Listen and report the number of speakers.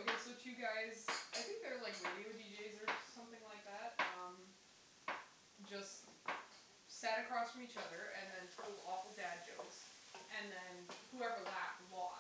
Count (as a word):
one